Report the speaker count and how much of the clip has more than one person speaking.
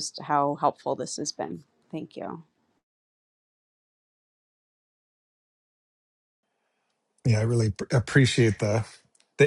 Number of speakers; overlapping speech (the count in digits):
2, no overlap